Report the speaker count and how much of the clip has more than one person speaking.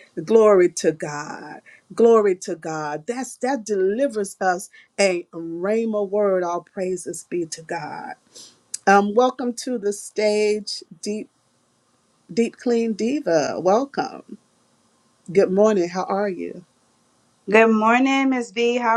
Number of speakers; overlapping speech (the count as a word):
two, no overlap